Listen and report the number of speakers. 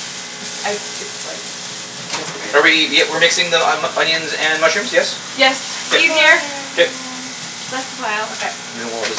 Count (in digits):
3